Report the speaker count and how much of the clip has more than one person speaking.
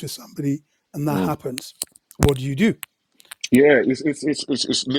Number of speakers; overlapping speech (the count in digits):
2, about 5%